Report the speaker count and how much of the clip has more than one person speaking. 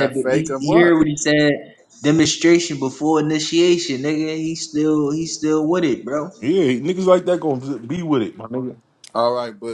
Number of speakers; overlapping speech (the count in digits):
3, about 10%